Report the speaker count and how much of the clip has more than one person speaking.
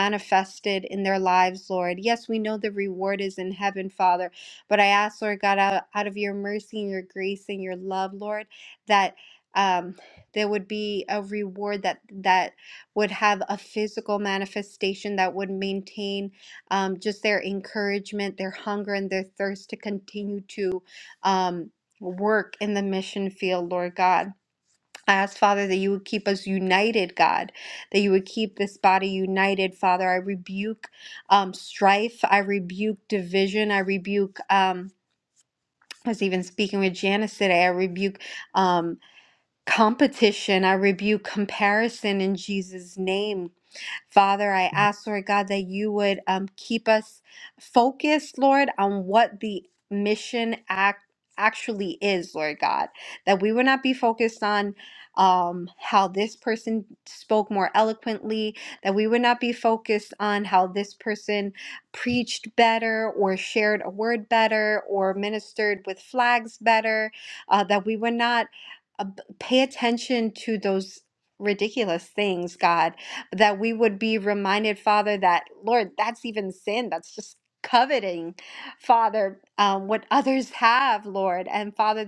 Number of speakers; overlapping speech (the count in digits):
1, no overlap